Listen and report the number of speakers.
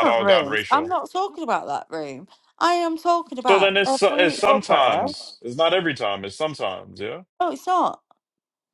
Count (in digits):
2